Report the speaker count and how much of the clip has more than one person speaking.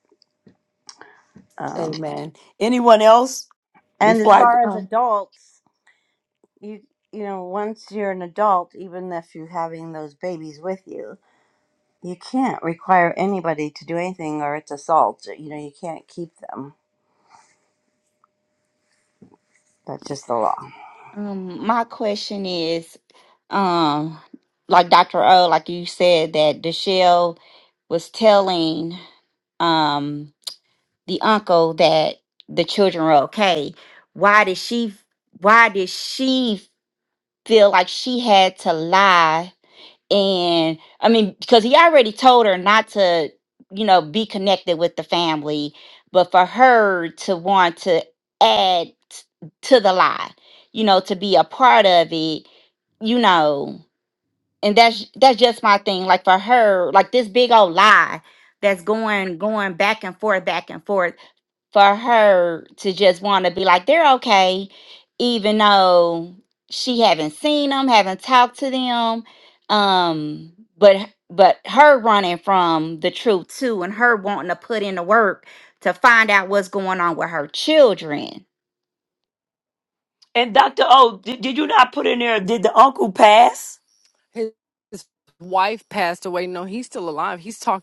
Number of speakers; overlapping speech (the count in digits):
4, about 1%